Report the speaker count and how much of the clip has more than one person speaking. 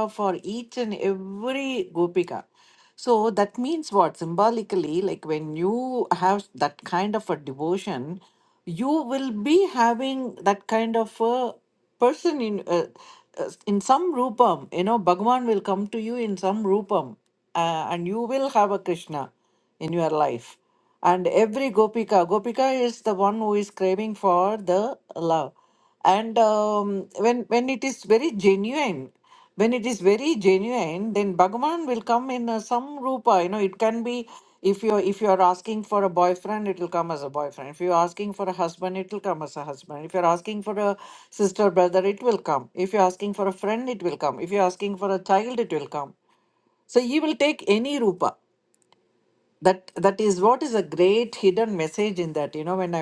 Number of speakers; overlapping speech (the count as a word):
one, no overlap